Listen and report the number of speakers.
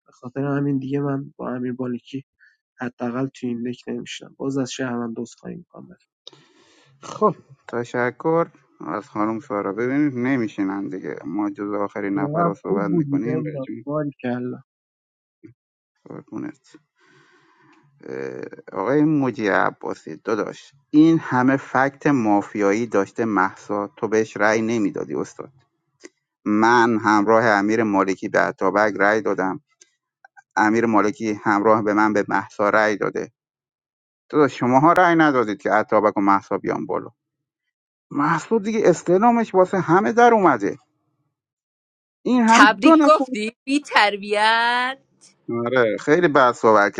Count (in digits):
3